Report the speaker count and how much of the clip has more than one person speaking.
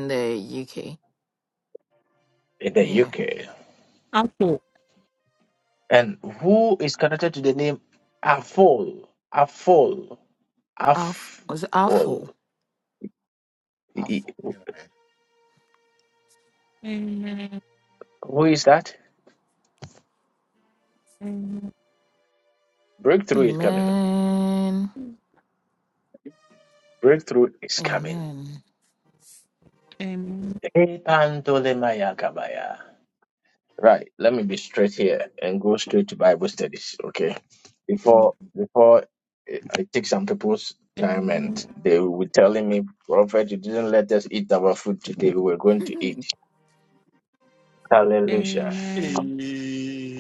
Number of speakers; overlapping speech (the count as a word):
four, about 8%